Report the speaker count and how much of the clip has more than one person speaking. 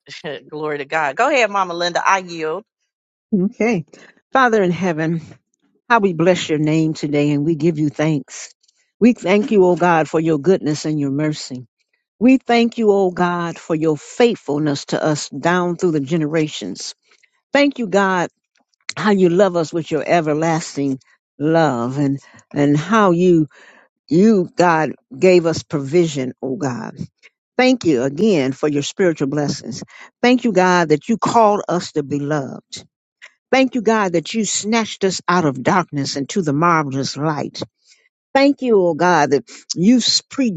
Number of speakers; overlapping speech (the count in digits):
2, no overlap